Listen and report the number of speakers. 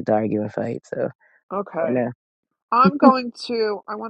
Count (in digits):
2